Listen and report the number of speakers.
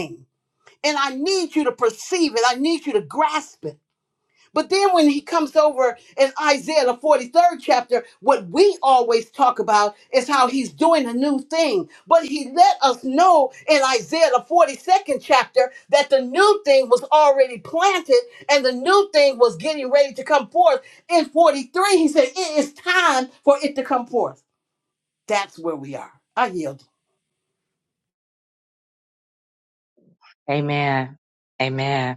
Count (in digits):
2